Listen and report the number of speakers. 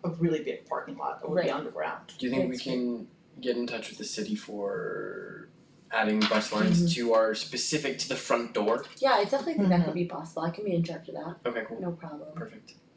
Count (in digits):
3